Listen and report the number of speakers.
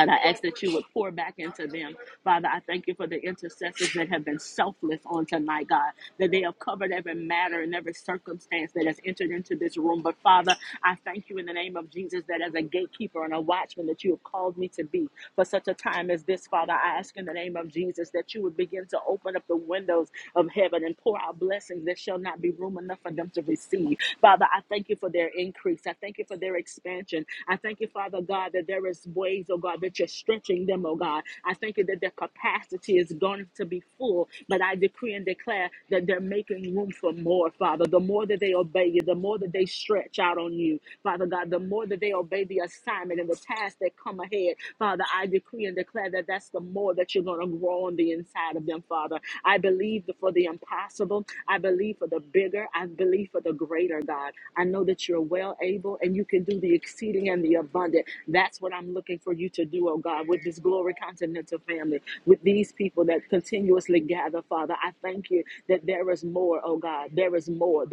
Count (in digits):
1